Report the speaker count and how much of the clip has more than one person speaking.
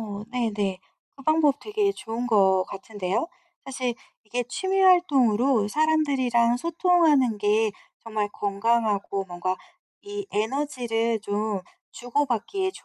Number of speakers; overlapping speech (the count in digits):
1, no overlap